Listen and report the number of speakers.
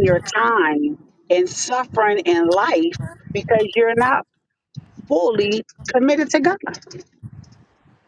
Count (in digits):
1